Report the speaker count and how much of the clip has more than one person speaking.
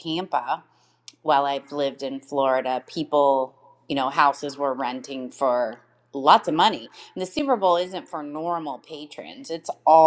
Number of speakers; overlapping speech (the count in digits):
1, no overlap